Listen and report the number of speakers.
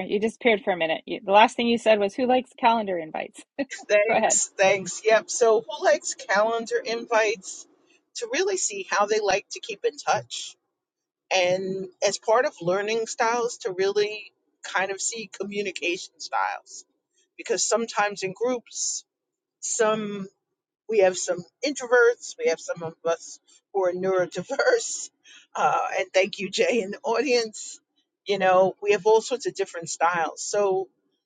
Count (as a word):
two